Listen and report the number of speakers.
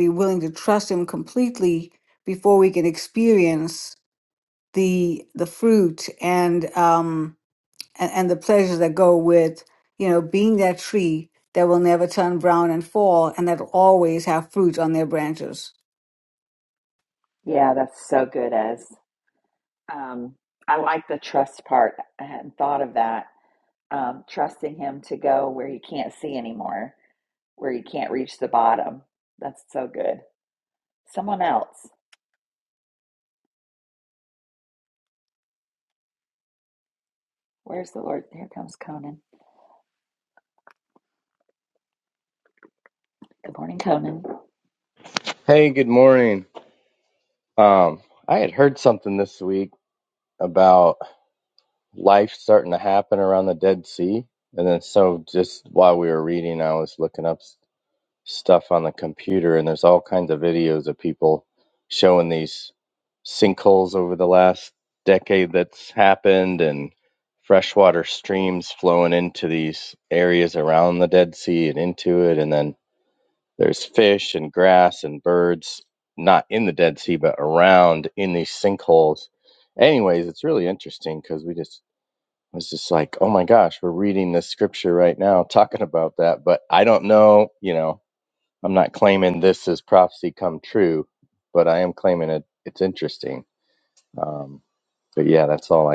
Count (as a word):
three